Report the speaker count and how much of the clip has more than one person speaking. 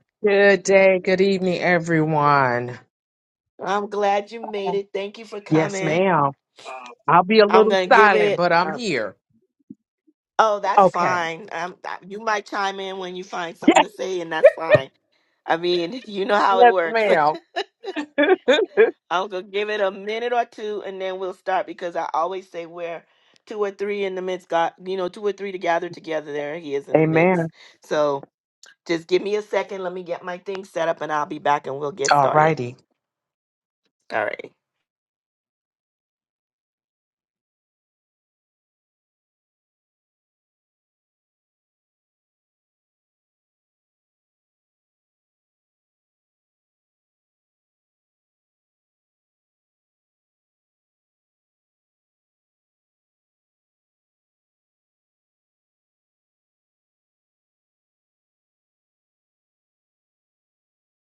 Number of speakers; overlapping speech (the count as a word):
two, about 6%